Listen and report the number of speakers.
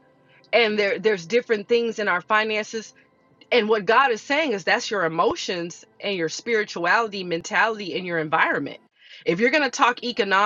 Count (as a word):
one